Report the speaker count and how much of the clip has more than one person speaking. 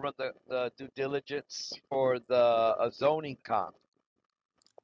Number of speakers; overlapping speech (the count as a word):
one, no overlap